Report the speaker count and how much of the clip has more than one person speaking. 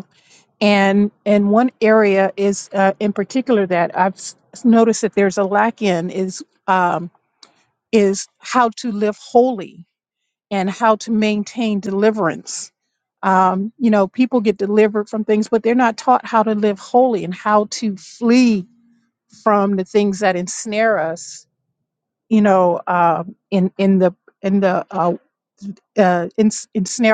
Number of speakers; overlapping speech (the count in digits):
1, no overlap